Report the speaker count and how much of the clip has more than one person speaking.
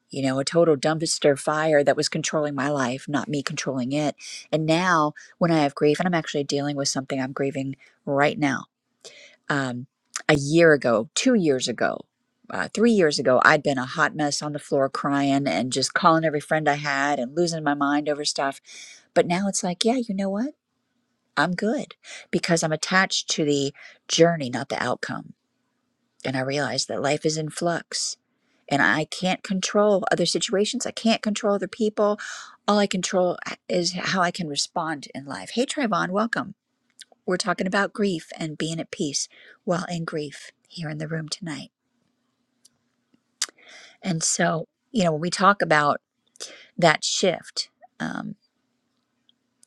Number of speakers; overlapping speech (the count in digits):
1, no overlap